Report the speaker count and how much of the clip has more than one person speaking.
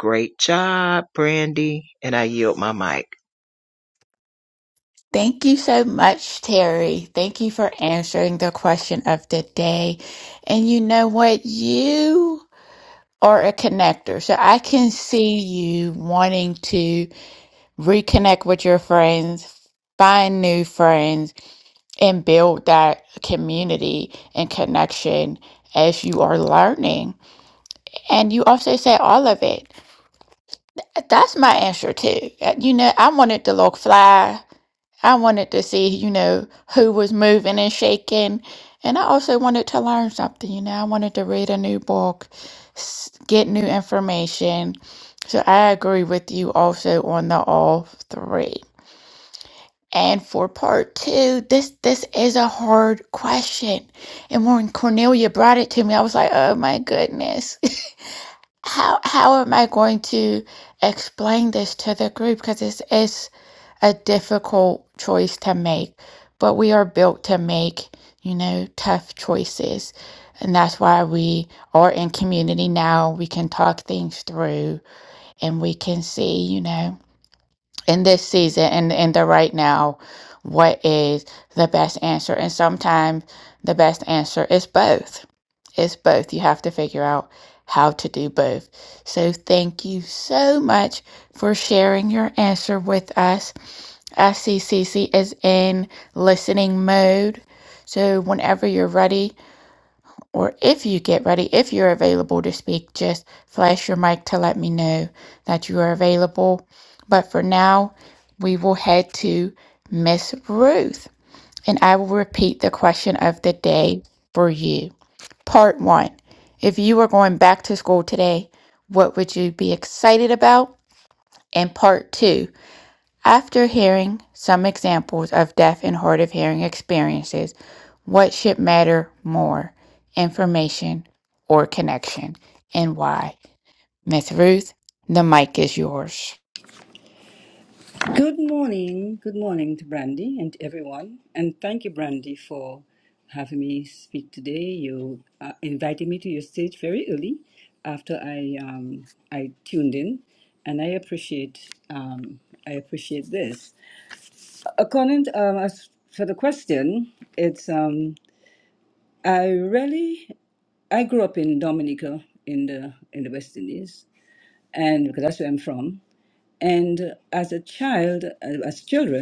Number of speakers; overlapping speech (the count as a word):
three, no overlap